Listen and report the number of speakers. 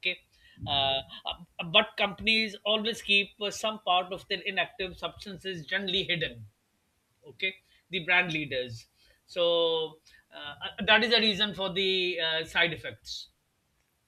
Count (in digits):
1